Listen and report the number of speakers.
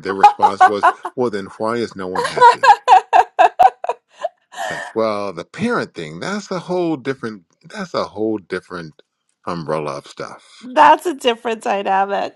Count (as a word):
two